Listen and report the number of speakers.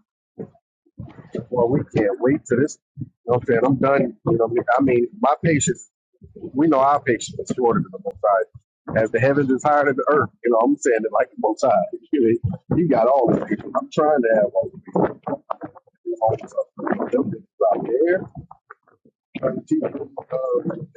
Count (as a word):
one